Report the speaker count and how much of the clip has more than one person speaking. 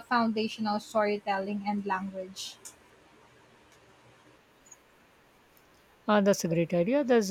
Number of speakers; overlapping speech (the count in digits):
2, no overlap